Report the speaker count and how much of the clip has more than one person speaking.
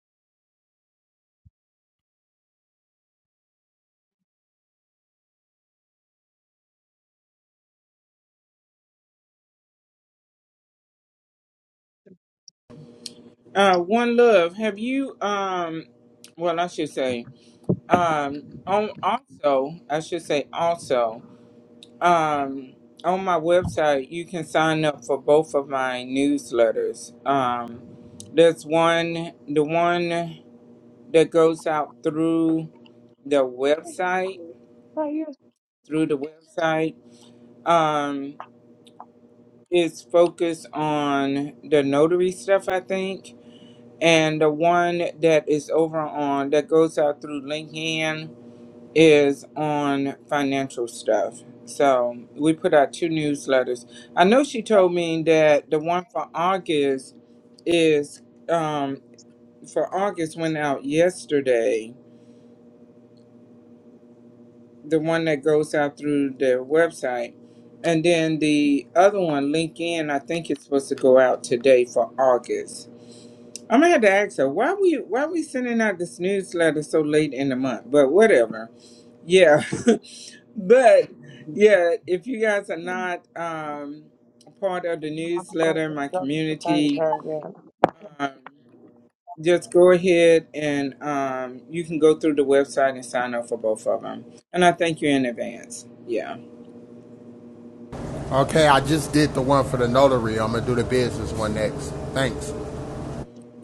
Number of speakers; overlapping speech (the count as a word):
three, about 2%